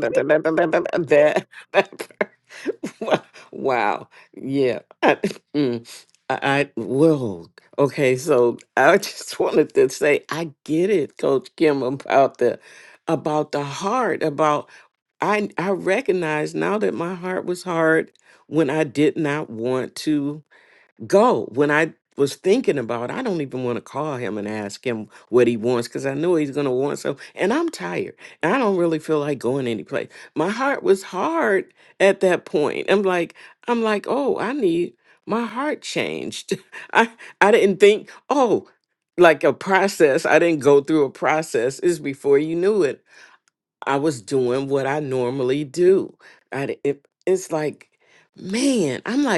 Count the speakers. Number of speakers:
1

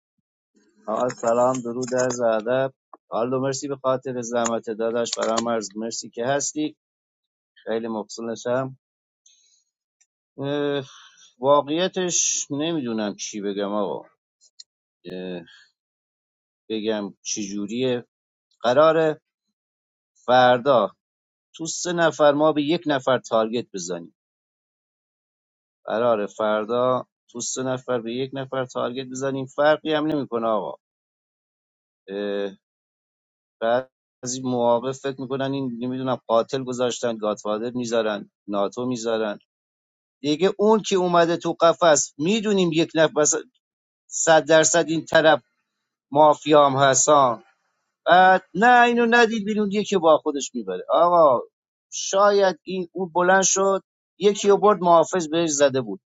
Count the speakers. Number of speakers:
1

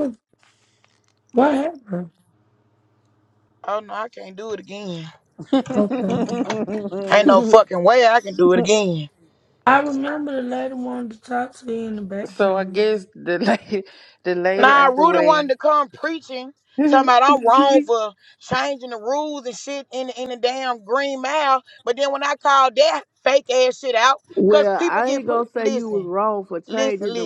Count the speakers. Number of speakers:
4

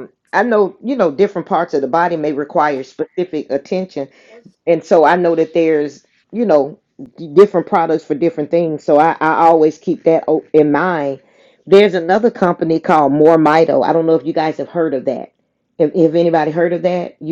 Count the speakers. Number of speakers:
1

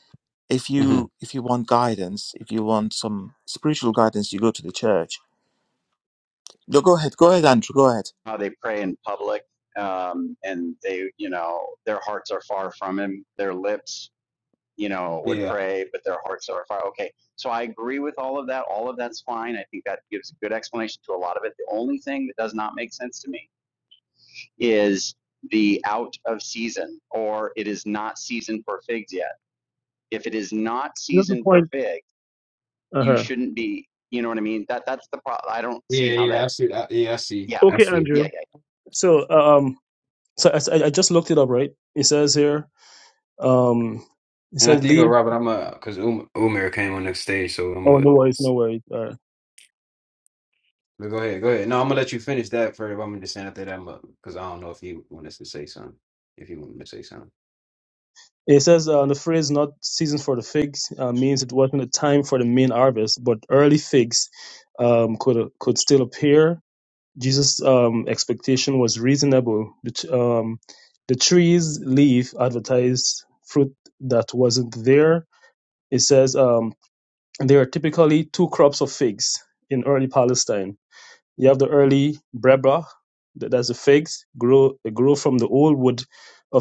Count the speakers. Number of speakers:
4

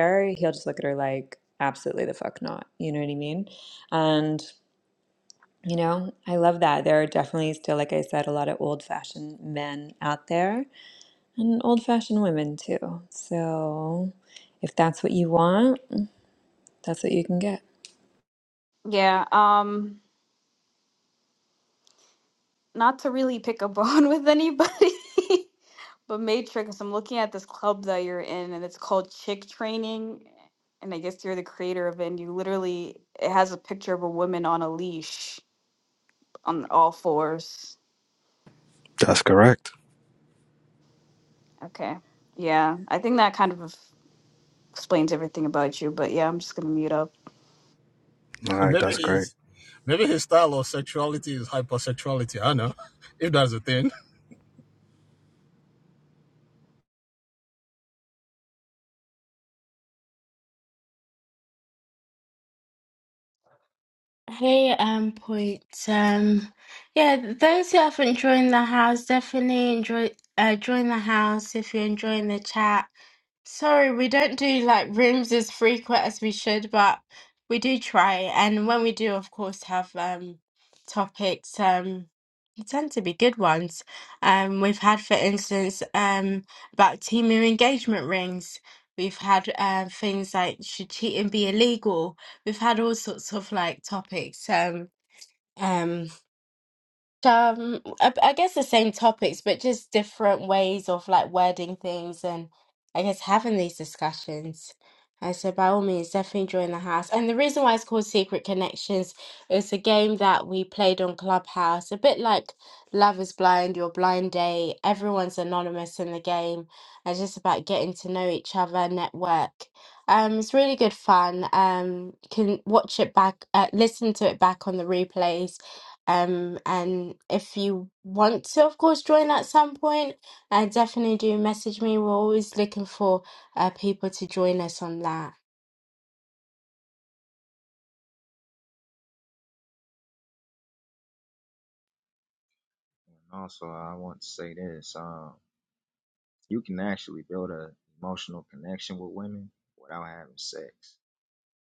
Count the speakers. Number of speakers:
6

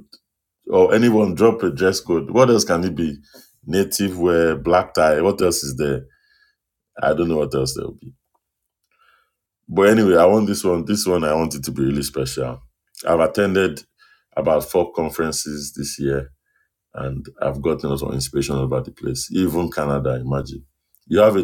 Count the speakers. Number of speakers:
1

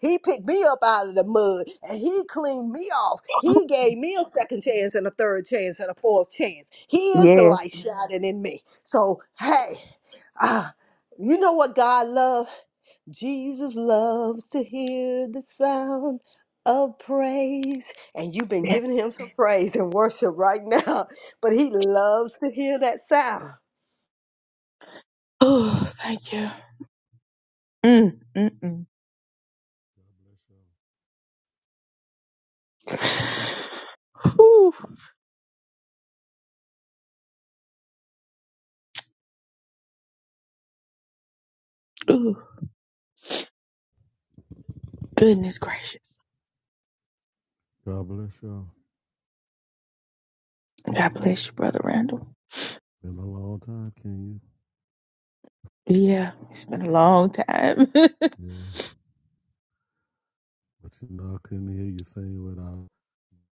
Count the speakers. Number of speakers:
3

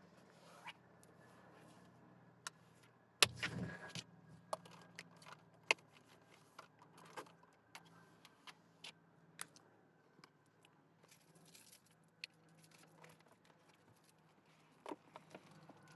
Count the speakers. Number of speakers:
0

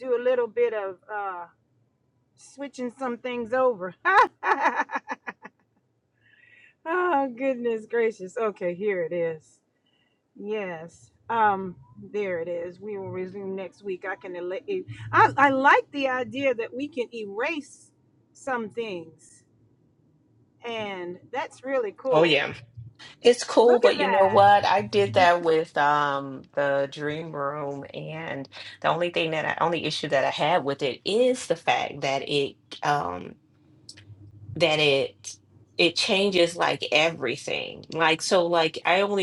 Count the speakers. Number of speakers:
2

